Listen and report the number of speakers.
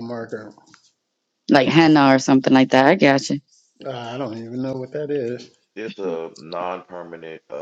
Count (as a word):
three